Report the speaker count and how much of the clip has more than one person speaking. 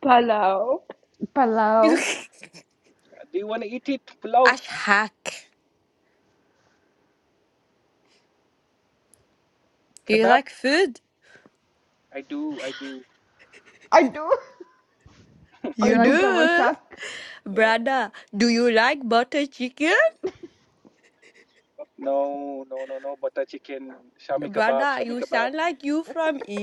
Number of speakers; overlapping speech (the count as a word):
four, about 10%